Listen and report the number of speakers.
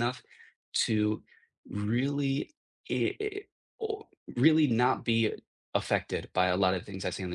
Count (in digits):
1